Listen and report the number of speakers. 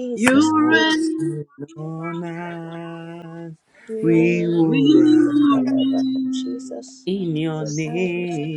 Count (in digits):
3